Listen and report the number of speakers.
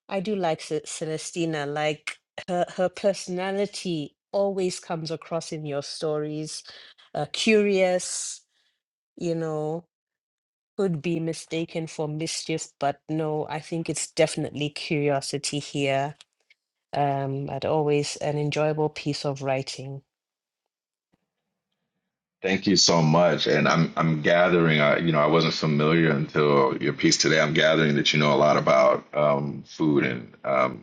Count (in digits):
2